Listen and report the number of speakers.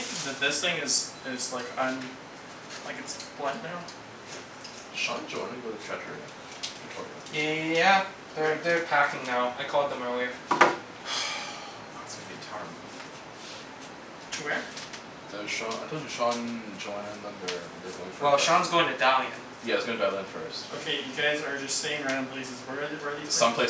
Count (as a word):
three